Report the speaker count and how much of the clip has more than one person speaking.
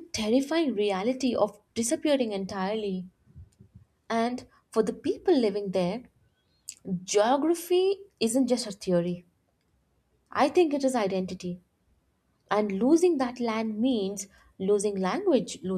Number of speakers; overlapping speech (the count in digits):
1, no overlap